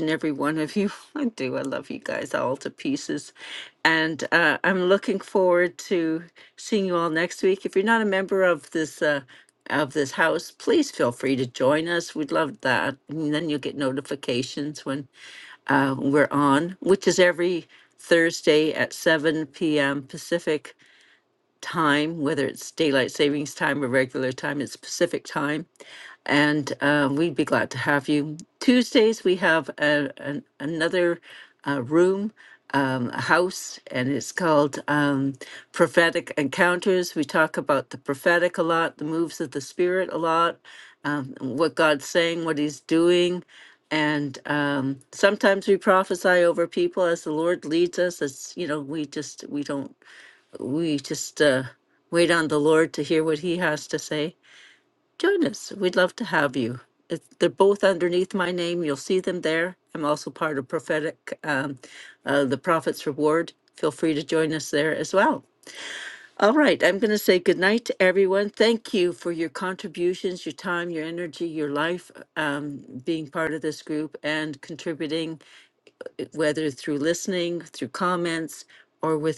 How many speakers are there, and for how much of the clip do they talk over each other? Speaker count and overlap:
one, no overlap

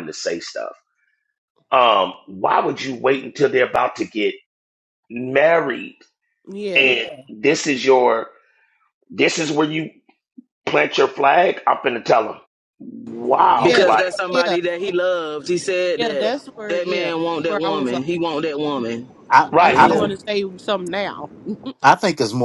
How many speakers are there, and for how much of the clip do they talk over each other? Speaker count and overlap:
four, about 14%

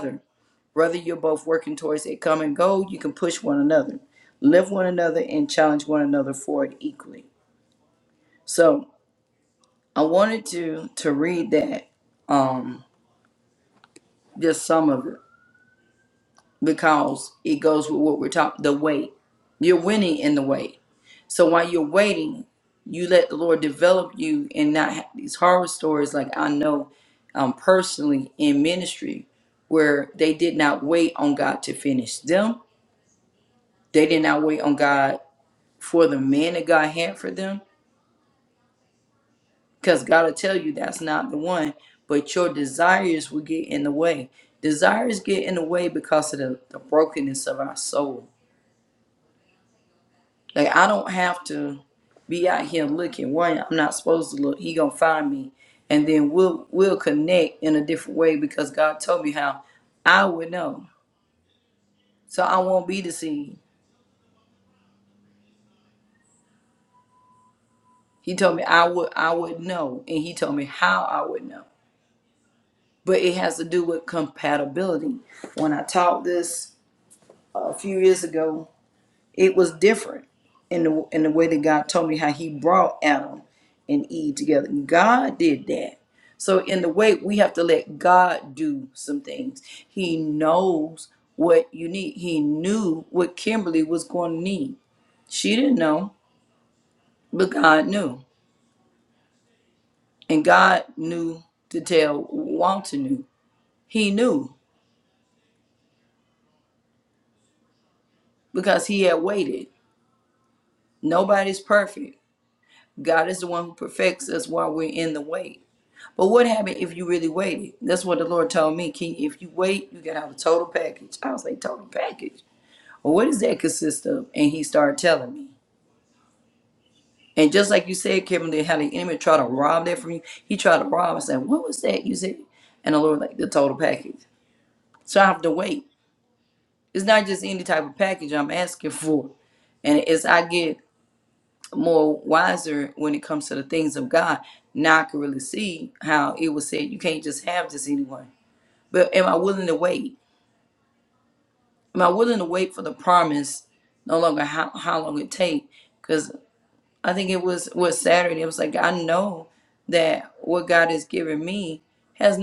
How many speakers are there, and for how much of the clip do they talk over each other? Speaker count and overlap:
one, no overlap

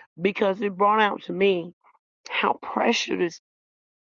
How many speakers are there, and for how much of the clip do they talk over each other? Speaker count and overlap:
one, no overlap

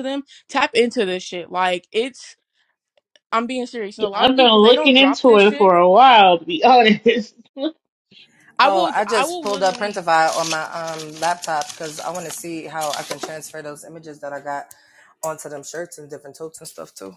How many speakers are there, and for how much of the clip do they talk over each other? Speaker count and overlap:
three, about 17%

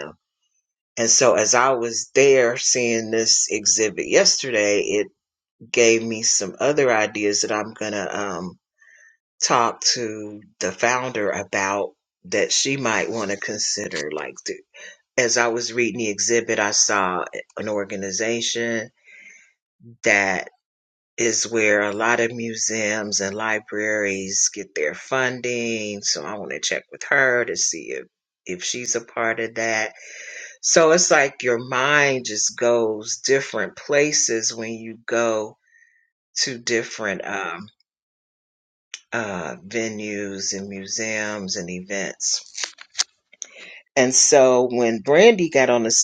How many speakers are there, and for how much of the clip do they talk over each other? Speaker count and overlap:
one, no overlap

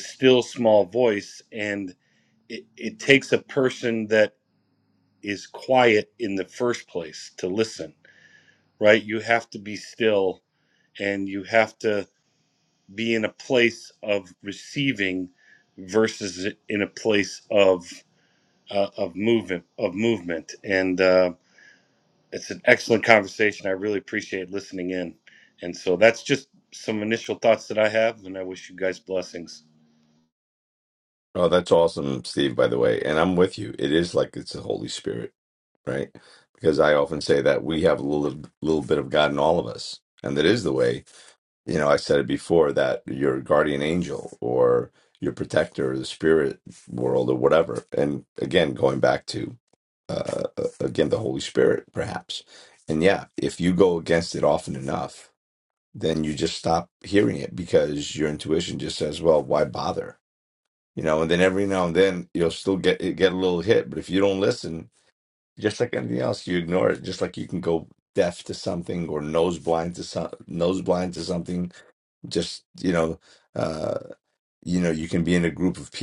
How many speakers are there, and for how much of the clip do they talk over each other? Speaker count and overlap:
two, no overlap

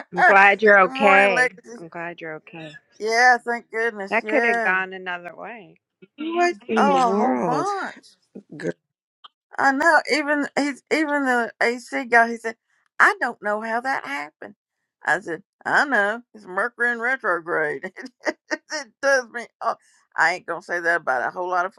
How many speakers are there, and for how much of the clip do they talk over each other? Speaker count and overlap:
three, about 13%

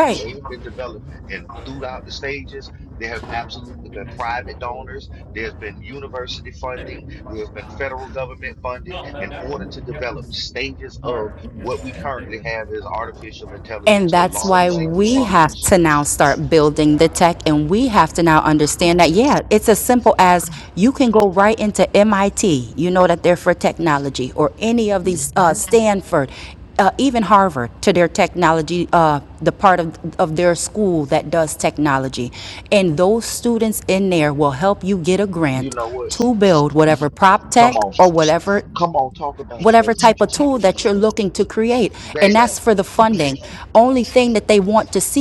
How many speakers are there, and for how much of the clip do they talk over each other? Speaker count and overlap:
two, about 8%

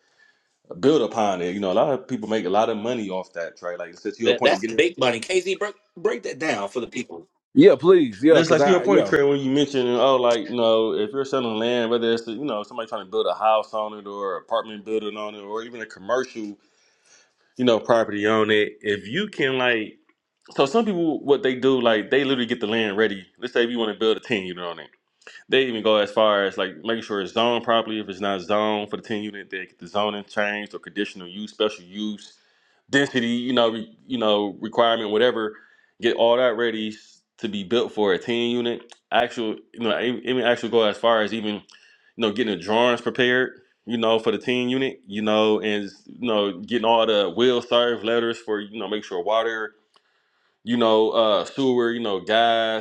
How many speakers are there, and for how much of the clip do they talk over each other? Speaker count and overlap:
three, about 3%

